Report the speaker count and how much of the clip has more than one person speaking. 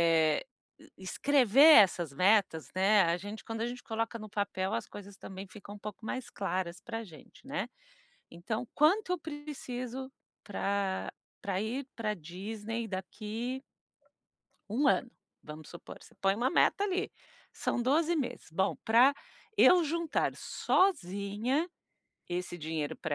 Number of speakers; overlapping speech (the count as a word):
one, no overlap